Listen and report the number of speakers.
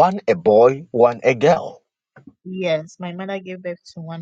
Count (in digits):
2